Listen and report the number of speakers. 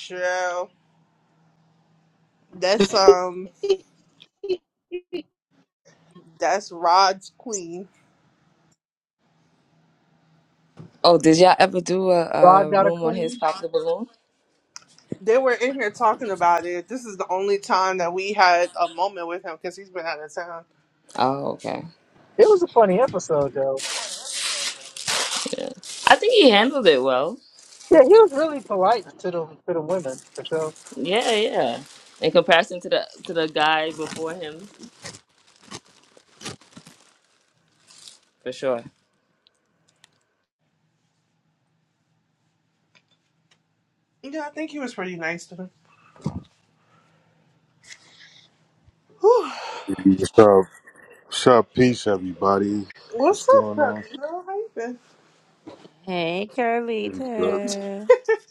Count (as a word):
five